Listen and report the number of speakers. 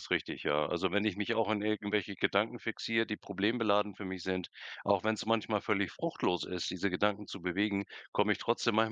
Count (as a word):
one